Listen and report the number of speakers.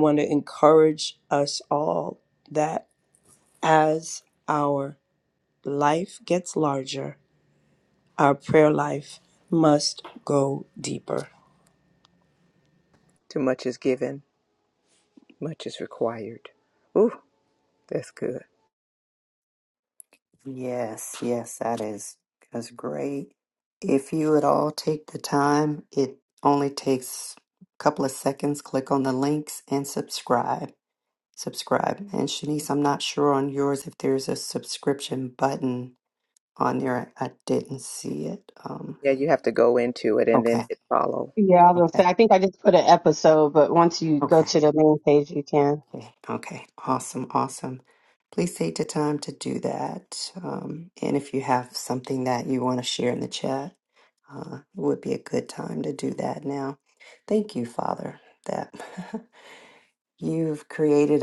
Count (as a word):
four